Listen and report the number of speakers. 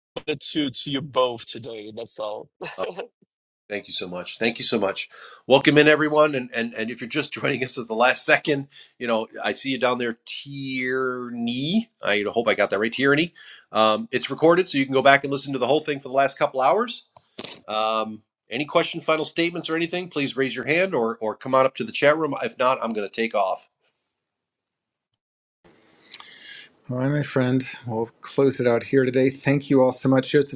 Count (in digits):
3